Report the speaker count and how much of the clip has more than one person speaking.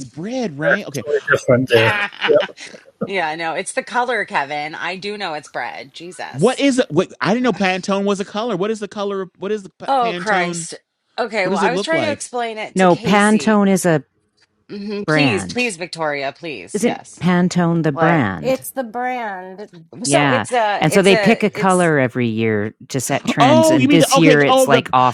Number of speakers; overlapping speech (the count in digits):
5, about 29%